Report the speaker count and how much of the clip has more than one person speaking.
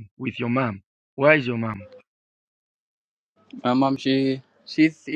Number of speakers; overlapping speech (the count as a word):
two, no overlap